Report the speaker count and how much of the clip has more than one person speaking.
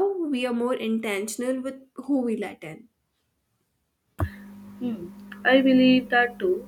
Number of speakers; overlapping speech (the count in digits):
2, no overlap